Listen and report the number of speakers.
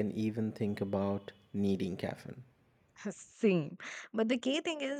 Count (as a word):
two